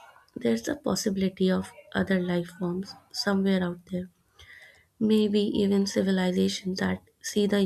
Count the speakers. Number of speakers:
one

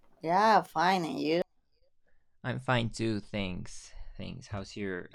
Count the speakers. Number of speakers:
two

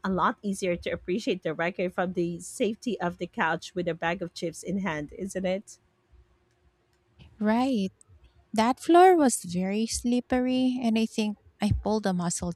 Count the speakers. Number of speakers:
two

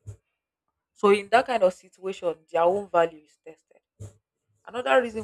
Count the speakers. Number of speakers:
one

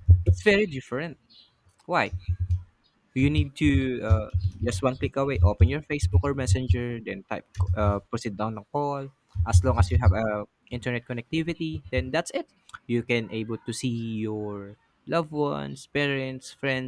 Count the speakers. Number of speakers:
one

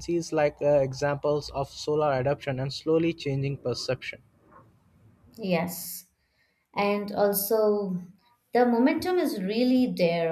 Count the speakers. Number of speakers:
two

